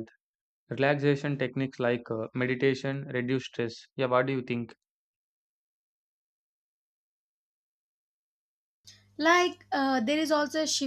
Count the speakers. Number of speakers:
two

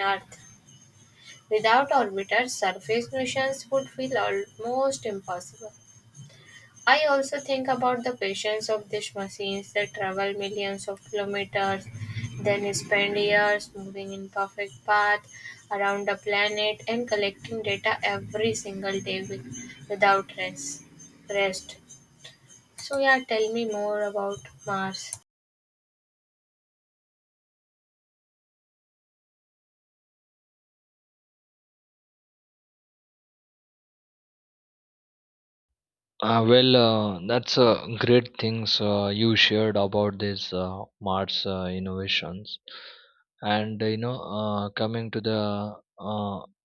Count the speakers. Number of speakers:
two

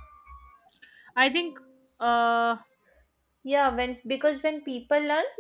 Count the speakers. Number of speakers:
two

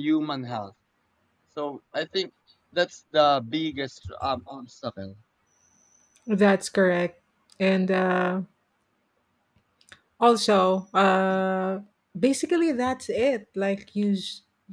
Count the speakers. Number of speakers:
two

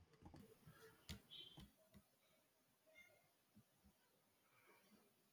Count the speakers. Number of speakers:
zero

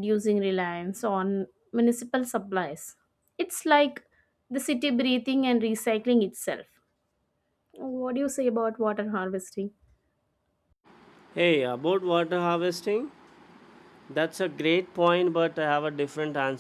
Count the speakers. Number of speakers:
two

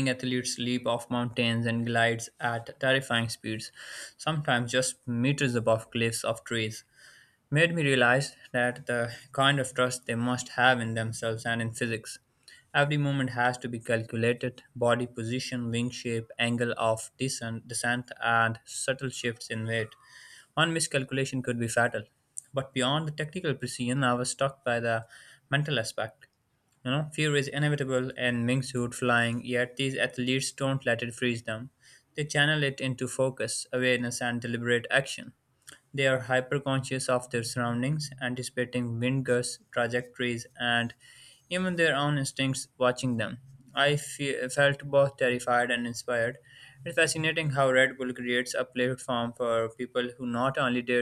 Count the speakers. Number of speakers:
one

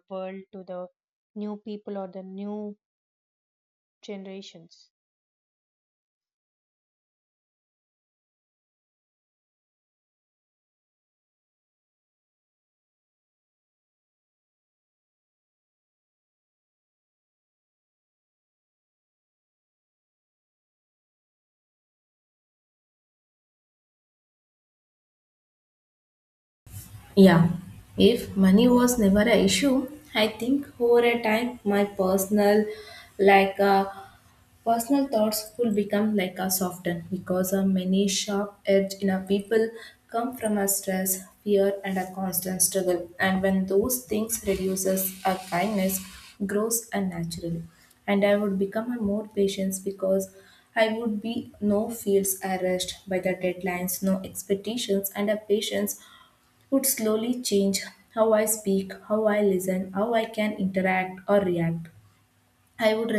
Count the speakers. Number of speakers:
two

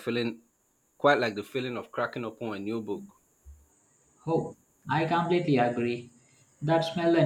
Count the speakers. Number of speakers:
two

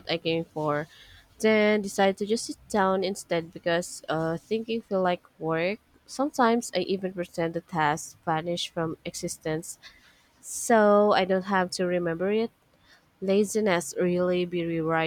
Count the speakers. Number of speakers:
one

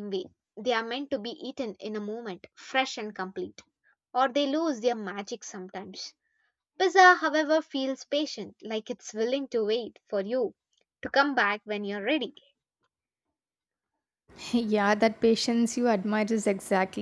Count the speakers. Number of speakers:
two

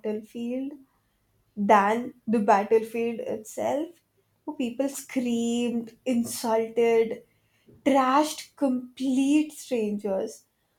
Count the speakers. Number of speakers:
one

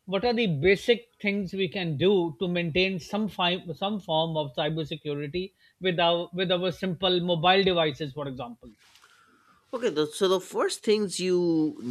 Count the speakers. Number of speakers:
two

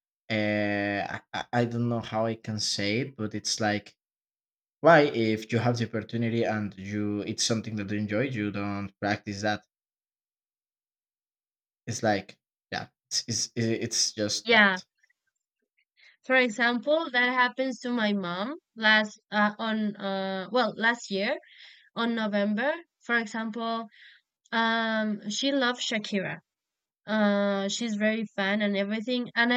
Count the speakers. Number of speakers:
two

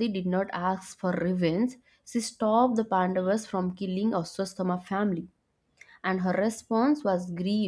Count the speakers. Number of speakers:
one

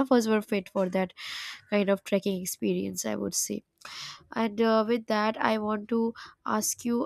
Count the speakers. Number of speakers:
one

